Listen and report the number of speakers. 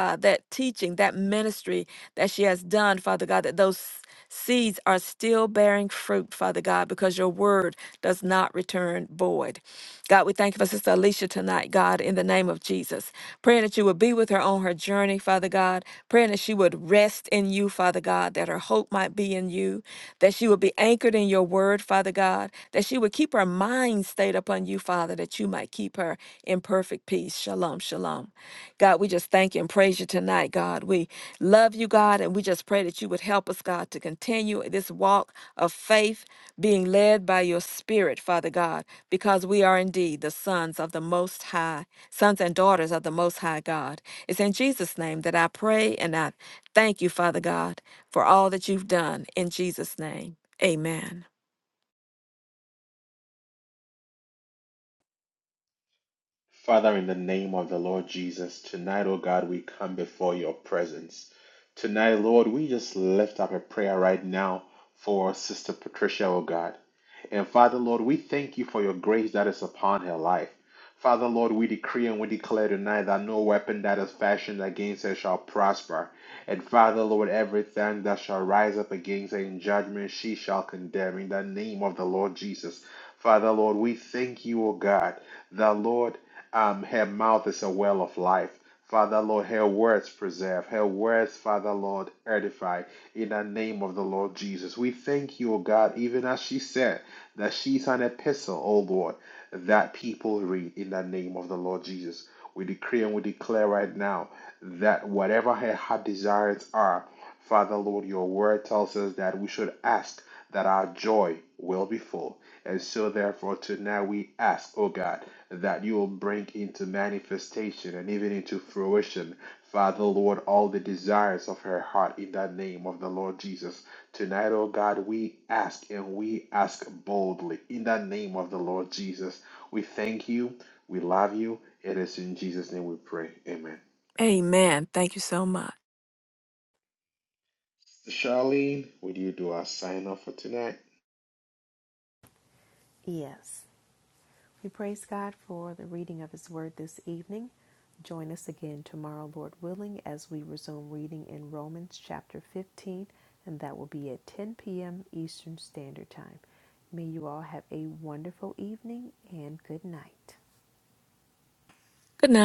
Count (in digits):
3